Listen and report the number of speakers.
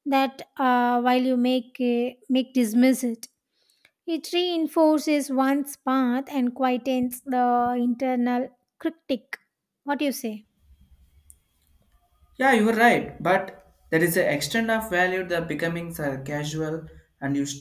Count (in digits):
2